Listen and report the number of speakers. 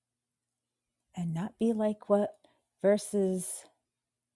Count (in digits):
1